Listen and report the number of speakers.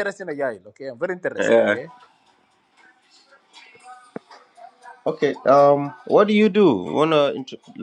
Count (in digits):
2